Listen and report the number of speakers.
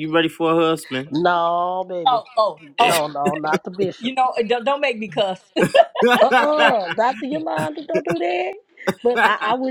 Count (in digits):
3